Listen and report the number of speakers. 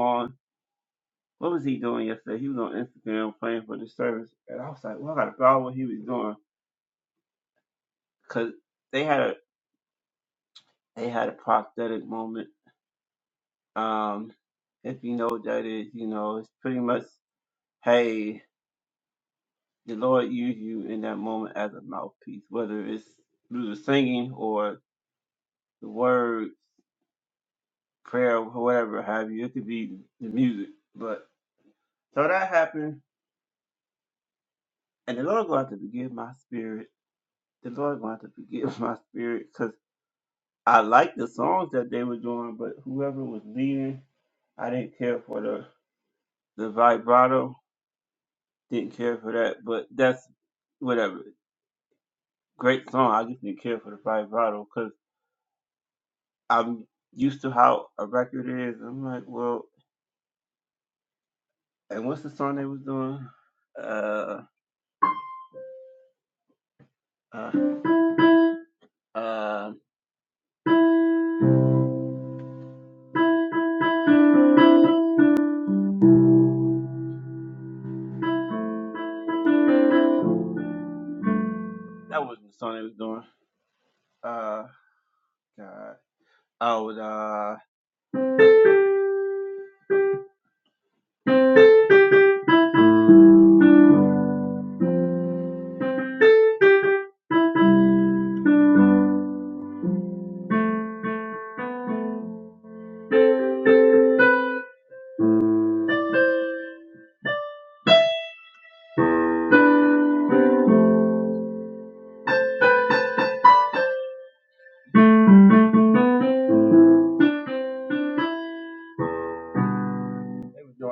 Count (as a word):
one